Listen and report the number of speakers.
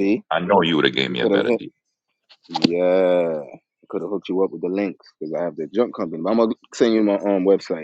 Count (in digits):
2